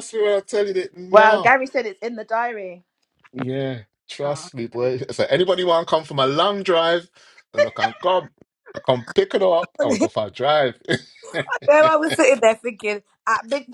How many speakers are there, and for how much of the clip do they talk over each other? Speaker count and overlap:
3, about 6%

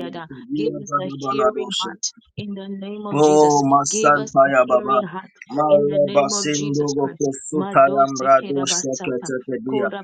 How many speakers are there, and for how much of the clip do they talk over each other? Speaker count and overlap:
2, about 72%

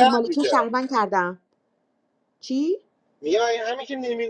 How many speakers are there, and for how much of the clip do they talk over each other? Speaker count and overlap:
2, about 16%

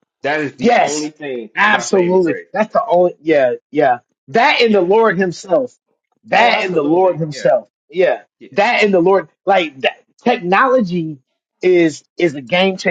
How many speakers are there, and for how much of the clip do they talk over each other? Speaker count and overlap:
2, about 21%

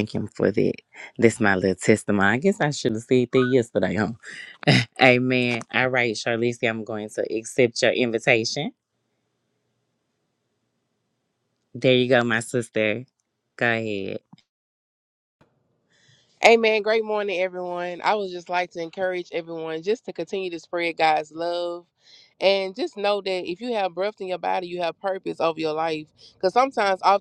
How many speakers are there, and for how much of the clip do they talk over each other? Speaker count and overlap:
2, no overlap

